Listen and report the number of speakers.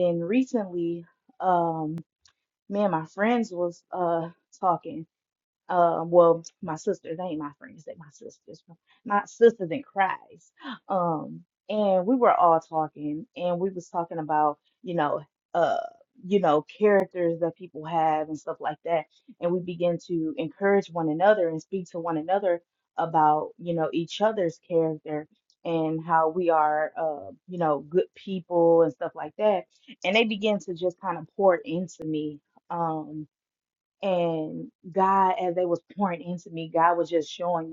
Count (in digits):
1